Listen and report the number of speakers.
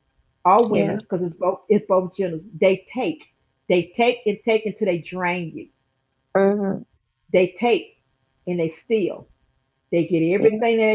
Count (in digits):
2